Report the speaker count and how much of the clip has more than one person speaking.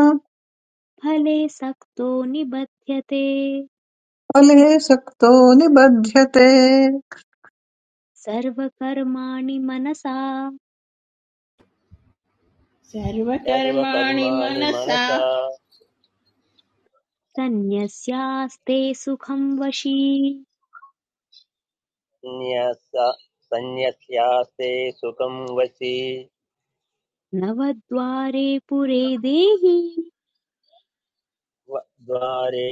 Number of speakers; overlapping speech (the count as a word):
four, about 4%